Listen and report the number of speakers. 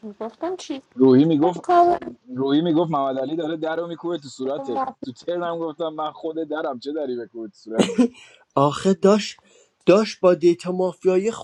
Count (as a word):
three